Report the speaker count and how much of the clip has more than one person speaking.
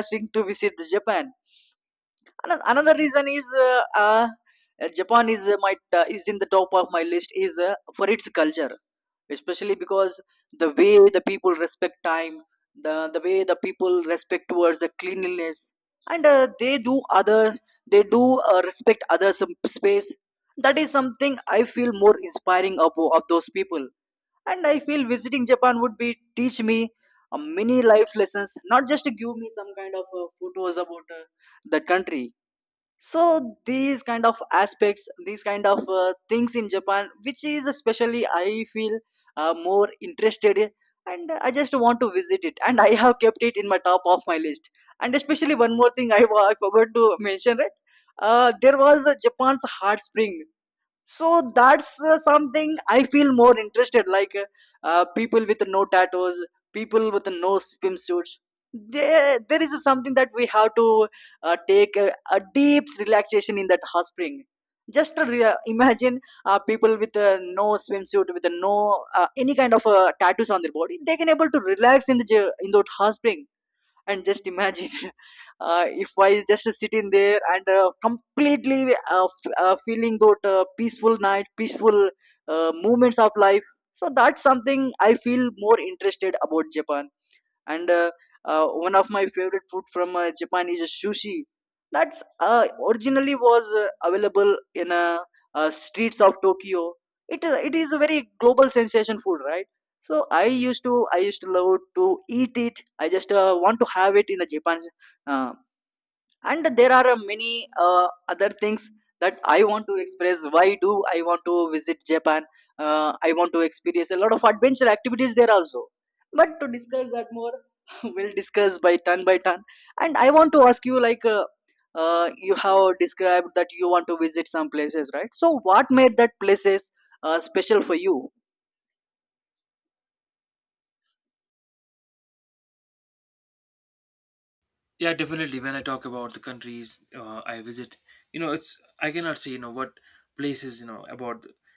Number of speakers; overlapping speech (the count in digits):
2, no overlap